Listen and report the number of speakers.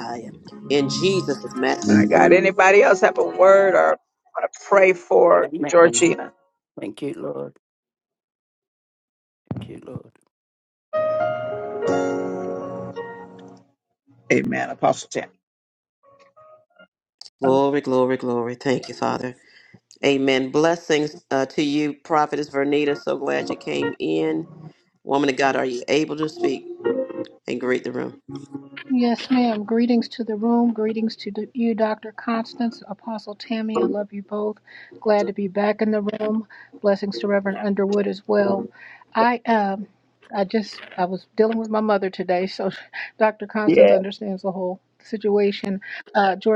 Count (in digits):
4